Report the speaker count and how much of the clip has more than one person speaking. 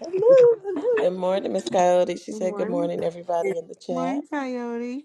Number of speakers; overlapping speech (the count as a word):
three, about 18%